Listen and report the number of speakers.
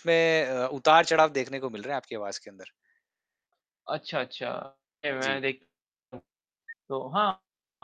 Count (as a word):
two